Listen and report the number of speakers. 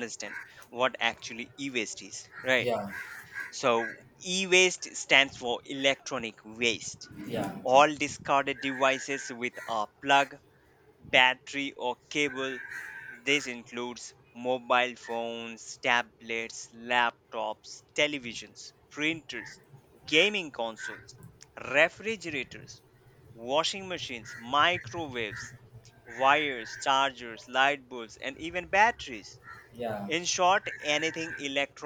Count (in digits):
2